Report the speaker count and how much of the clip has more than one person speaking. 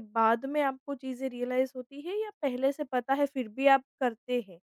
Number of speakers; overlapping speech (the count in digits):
1, no overlap